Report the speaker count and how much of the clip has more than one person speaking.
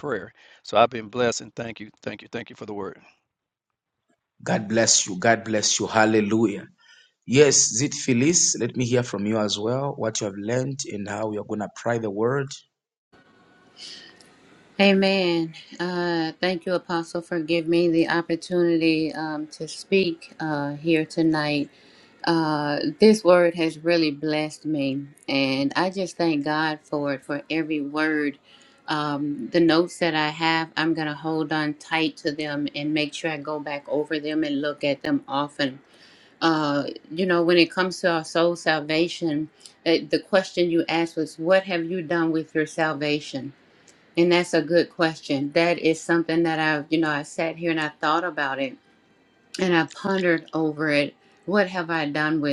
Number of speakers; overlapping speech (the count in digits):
3, no overlap